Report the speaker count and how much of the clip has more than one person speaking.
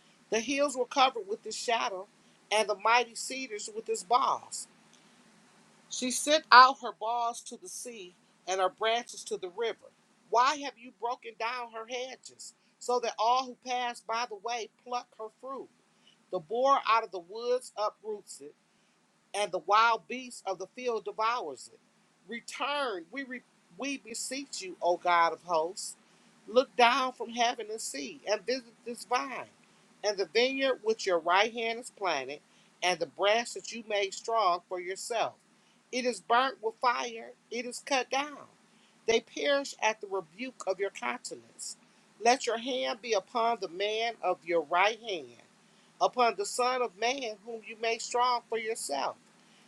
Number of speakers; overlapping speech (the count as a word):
one, no overlap